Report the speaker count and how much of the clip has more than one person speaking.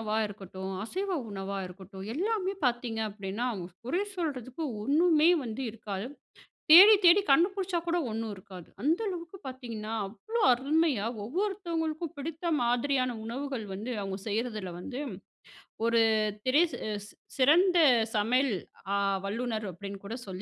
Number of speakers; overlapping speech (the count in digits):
1, no overlap